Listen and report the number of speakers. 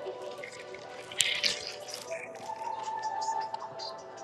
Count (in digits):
0